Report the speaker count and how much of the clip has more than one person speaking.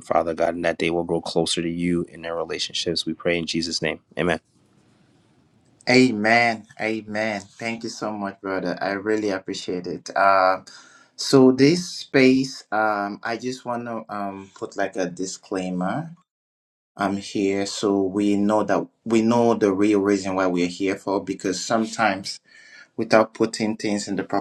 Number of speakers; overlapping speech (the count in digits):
2, no overlap